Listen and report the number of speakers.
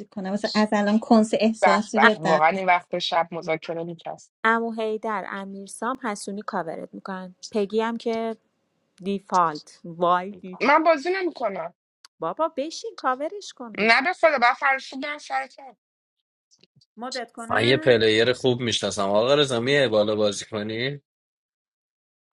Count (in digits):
4